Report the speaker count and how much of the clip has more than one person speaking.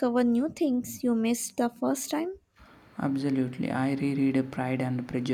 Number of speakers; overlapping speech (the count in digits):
2, no overlap